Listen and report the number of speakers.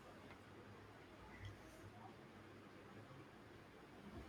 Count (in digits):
0